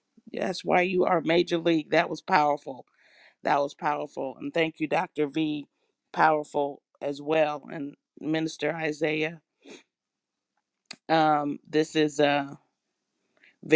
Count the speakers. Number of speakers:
1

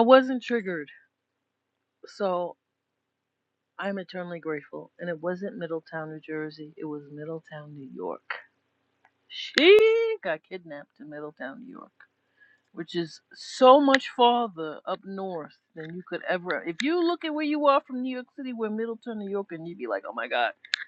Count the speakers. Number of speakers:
1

